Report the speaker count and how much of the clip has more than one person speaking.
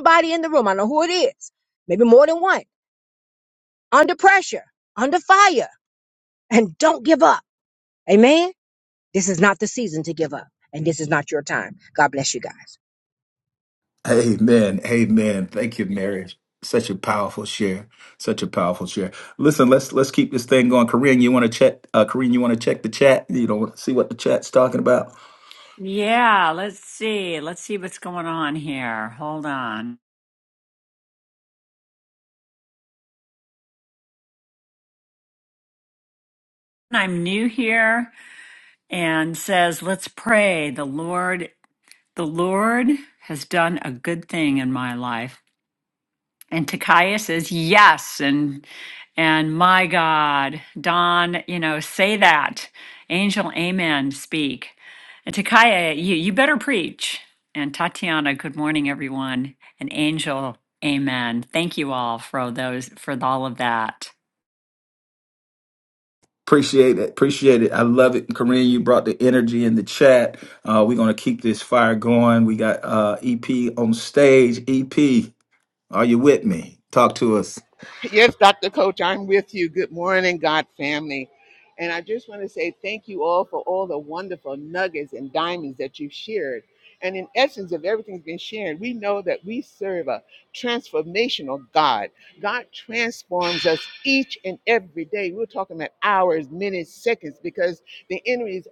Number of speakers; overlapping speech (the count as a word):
four, no overlap